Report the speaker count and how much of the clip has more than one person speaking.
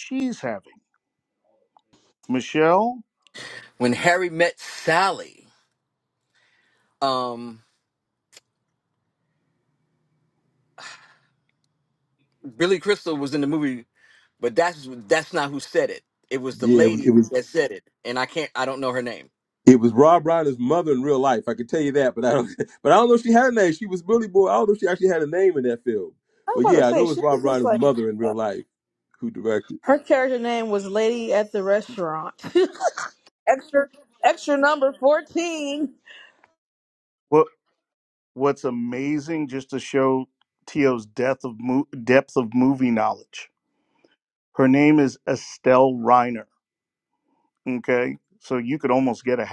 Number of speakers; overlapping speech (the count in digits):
4, about 4%